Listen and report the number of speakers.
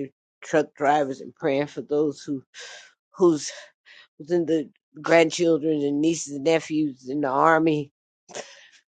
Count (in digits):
1